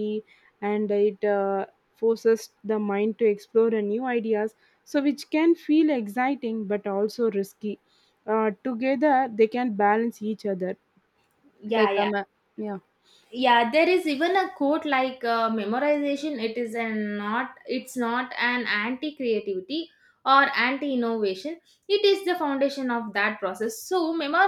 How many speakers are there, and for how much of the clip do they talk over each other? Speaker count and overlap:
two, about 2%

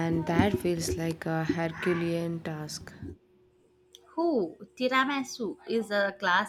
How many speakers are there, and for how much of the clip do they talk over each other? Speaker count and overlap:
two, no overlap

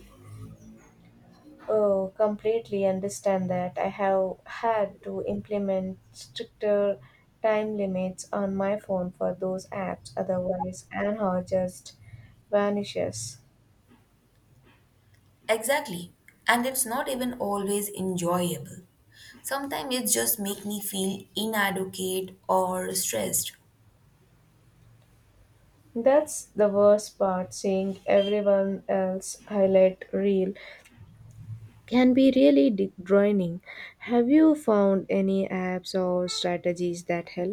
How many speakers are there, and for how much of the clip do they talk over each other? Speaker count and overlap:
two, no overlap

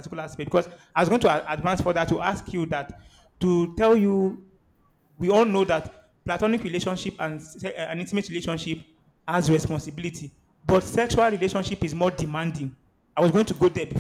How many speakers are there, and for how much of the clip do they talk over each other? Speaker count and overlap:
one, no overlap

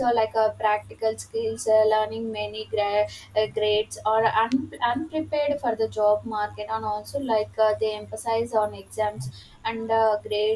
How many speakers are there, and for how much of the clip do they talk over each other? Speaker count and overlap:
one, no overlap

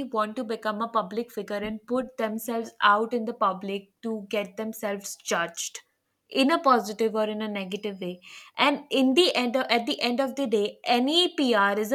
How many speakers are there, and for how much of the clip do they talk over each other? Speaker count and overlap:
one, no overlap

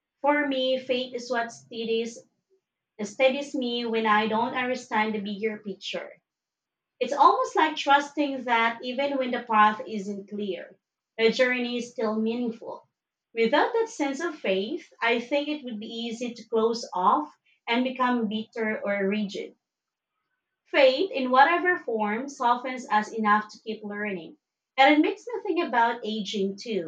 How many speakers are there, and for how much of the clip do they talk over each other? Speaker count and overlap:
one, no overlap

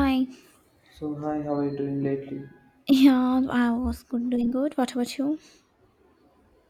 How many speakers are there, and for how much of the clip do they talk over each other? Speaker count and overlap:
two, no overlap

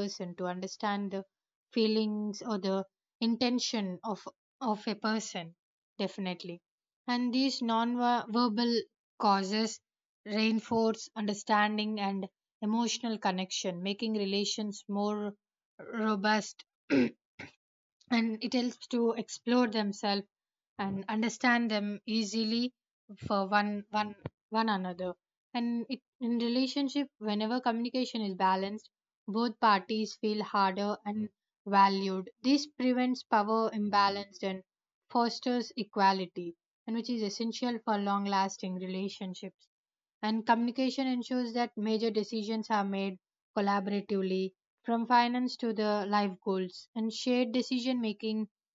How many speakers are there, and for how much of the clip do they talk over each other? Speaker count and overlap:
one, no overlap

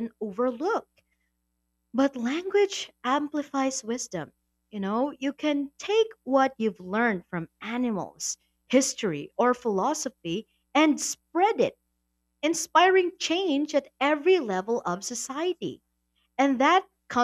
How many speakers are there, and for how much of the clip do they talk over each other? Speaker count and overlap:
one, no overlap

